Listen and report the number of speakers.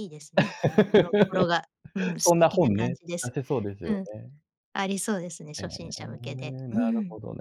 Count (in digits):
2